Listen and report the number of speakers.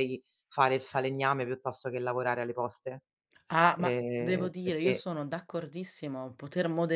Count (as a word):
two